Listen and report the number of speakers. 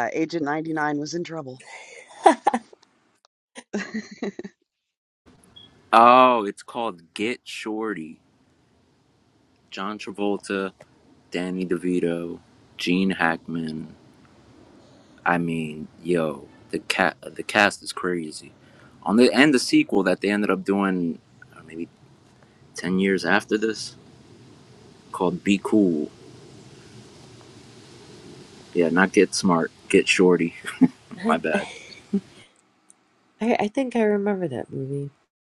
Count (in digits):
3